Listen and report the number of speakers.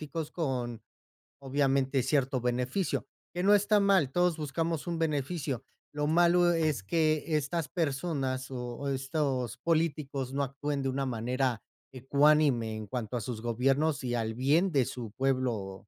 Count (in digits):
1